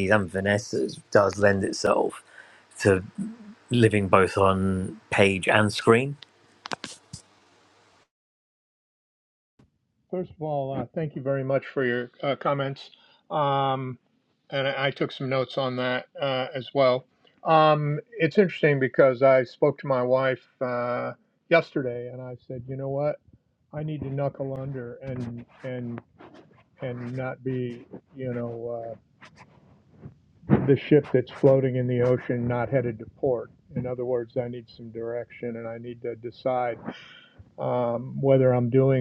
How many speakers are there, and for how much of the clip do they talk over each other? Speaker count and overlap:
2, no overlap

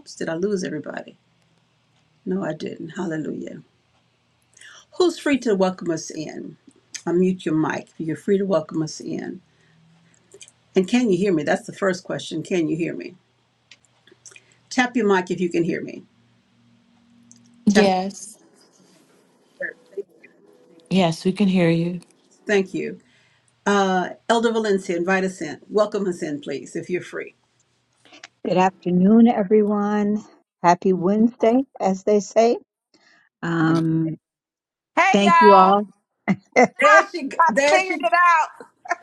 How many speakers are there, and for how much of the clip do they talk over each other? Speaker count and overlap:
4, about 6%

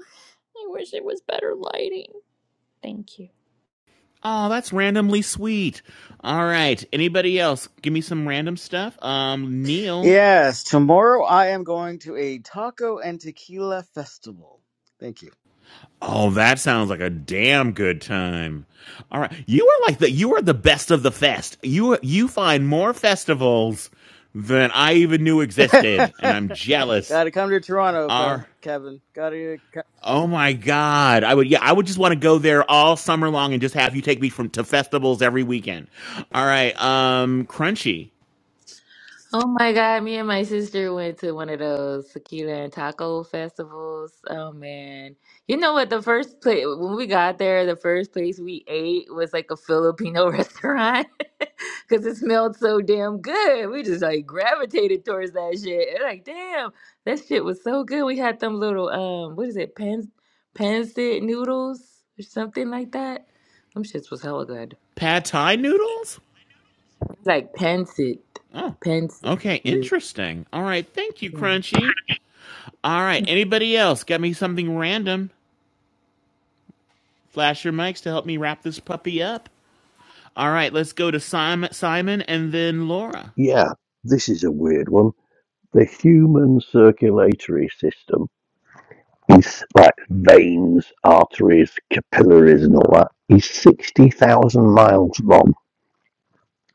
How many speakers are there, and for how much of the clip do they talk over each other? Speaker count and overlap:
5, about 1%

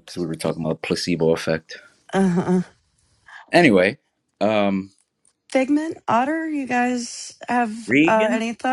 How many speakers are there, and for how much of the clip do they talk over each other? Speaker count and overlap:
2, about 6%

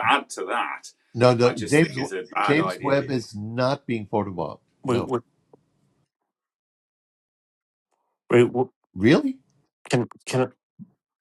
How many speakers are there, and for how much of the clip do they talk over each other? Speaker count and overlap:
3, about 14%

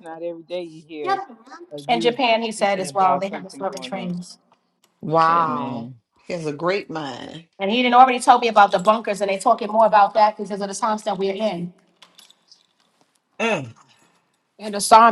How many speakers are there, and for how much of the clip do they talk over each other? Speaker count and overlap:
3, about 15%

